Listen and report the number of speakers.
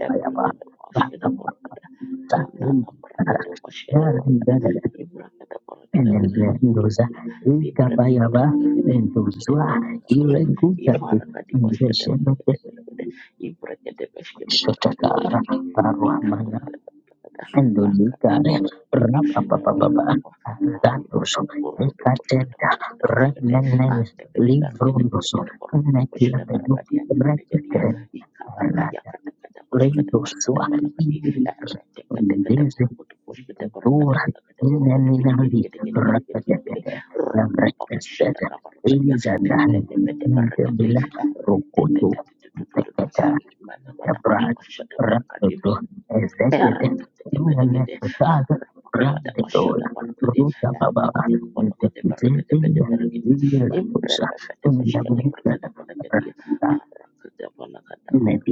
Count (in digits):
2